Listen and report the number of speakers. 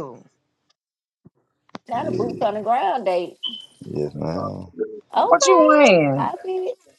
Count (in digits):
3